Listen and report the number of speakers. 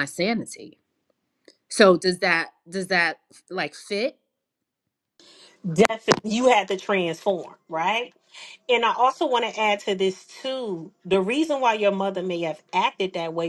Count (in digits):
2